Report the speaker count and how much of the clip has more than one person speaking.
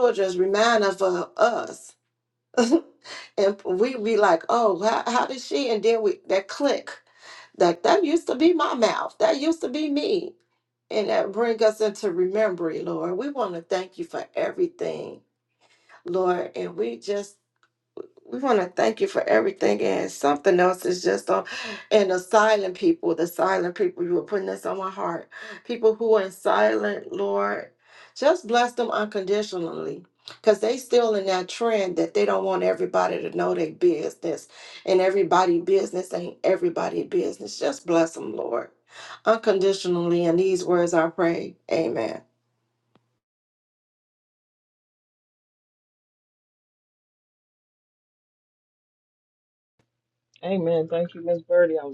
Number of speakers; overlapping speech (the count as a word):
two, no overlap